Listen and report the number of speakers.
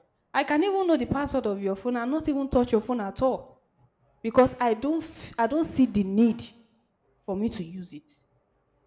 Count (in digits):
1